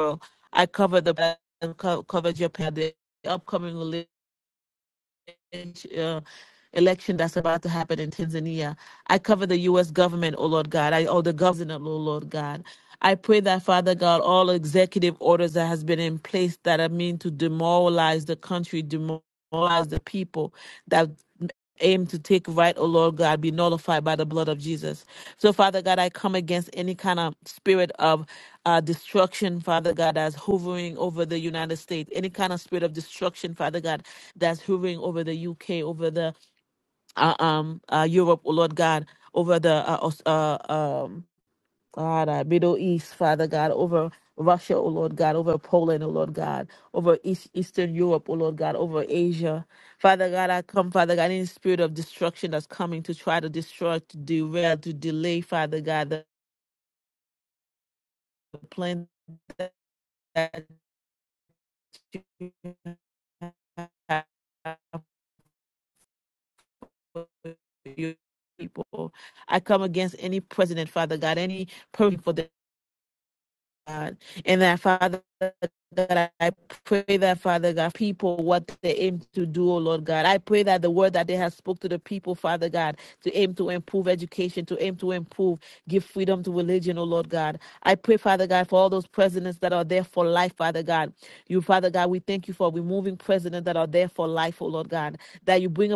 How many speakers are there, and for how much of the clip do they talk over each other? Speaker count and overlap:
one, no overlap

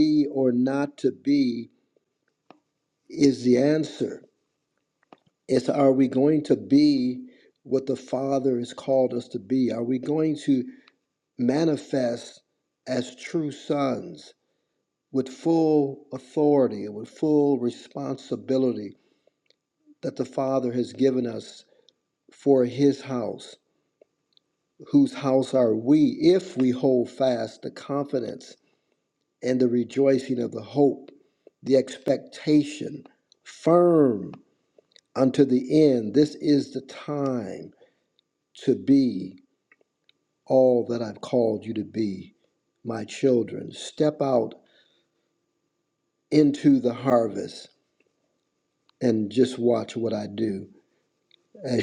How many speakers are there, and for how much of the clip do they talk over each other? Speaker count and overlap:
one, no overlap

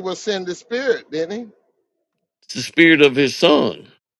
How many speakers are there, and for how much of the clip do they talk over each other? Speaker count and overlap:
two, no overlap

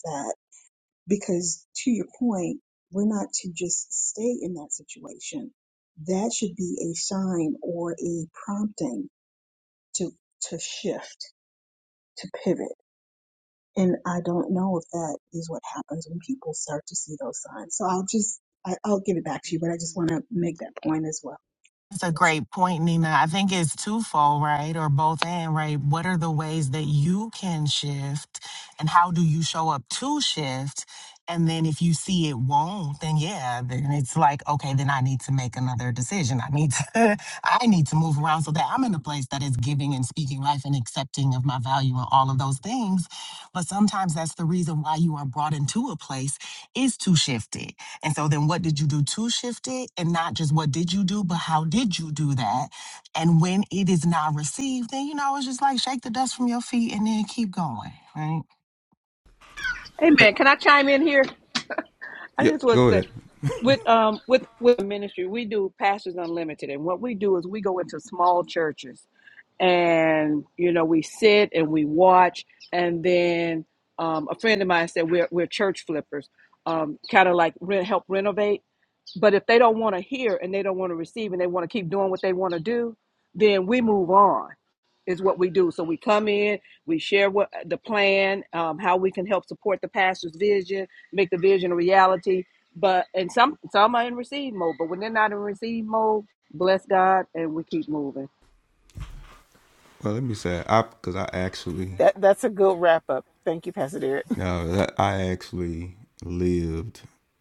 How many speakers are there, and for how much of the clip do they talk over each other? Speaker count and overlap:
five, about 1%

